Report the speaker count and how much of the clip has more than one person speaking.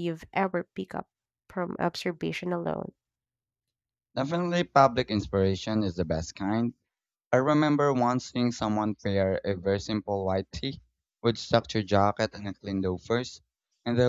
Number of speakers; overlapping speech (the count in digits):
2, no overlap